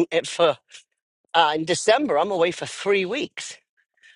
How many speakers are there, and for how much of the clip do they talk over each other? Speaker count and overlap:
1, no overlap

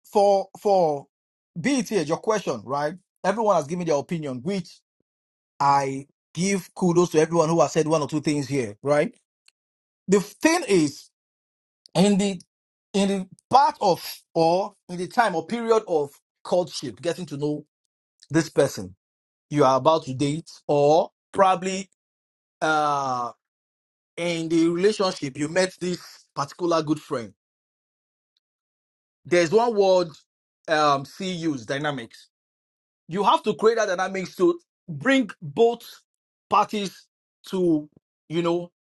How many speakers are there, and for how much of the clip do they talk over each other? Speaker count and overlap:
1, no overlap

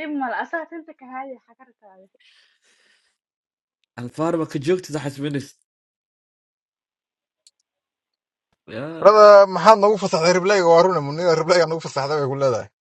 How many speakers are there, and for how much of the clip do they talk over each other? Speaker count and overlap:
3, no overlap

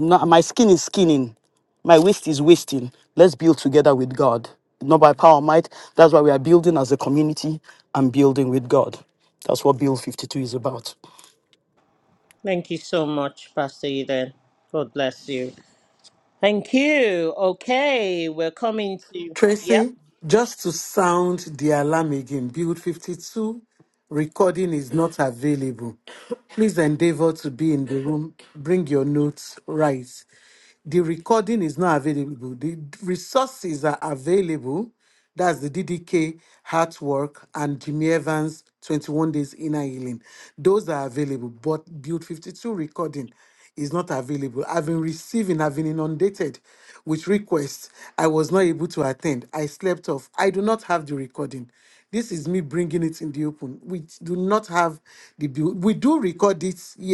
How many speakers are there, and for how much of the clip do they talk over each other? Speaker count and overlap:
3, about 1%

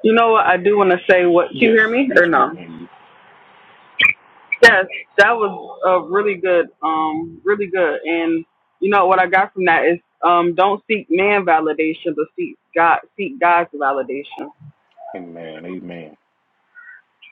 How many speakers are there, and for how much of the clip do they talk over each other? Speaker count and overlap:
2, about 6%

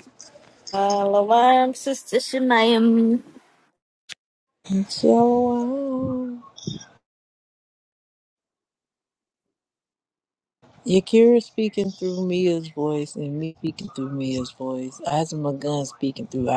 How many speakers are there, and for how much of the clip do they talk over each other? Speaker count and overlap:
2, no overlap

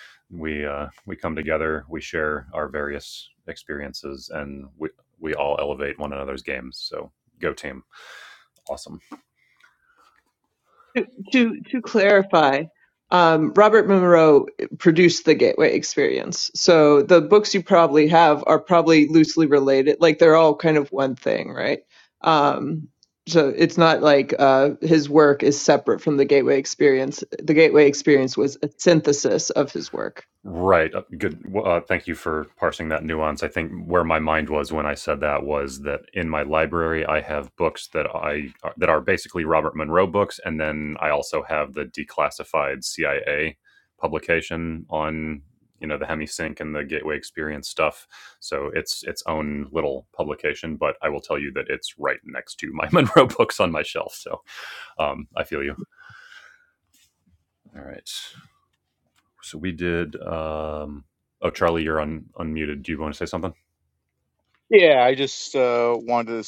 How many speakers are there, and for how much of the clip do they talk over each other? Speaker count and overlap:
3, no overlap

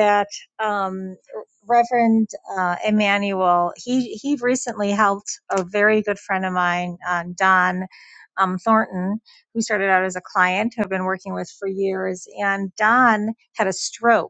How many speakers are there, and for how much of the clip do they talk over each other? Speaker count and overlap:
1, no overlap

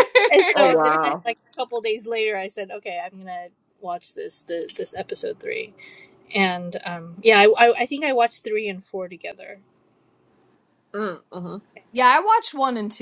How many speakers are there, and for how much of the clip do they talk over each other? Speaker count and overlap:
3, about 5%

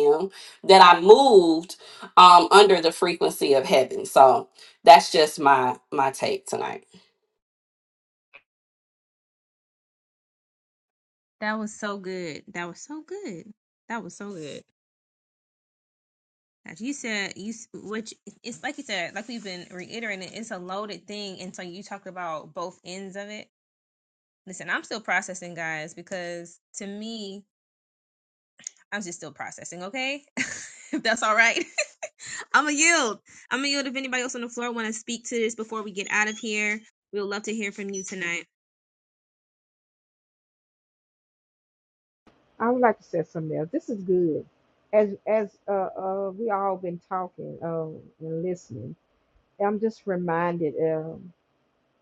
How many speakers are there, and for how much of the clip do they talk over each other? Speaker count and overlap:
3, no overlap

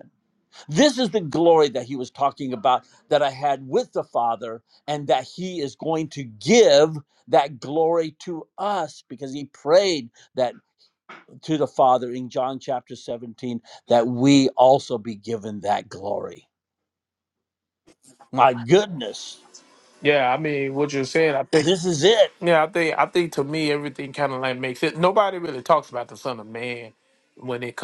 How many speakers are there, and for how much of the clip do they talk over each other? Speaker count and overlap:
2, under 1%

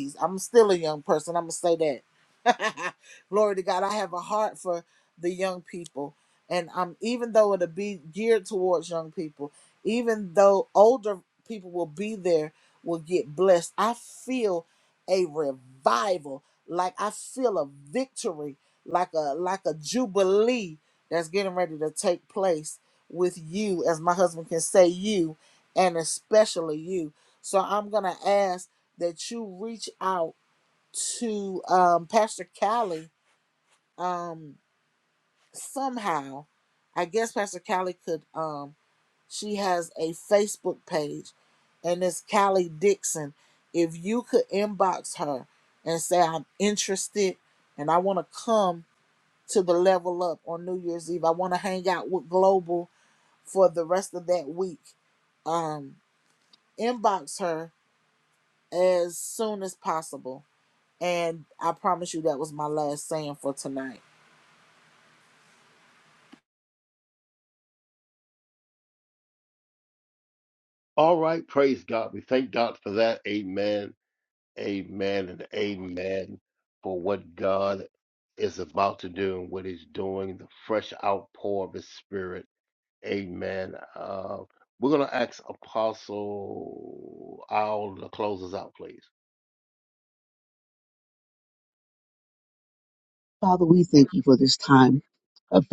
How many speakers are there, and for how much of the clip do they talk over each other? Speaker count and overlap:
3, no overlap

